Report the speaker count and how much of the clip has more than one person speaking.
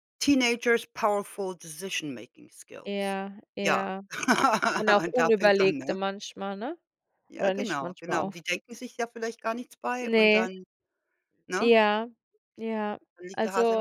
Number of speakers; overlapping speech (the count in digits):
2, about 23%